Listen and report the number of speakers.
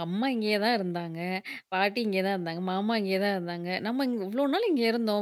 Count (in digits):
1